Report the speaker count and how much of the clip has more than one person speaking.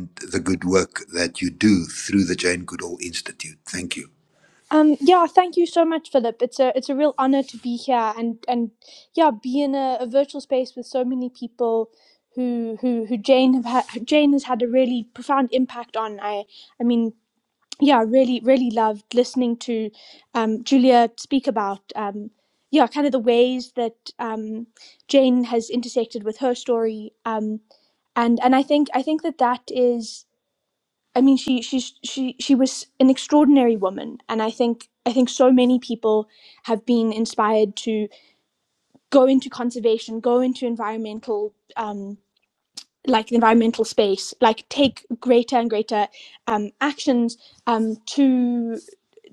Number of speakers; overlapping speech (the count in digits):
2, no overlap